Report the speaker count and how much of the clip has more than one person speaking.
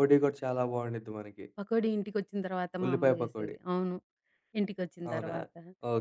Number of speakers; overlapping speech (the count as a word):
two, about 18%